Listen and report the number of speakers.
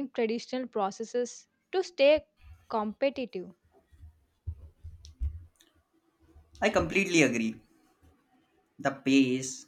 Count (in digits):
2